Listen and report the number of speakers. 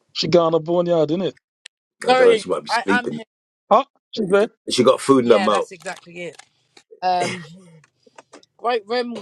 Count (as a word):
three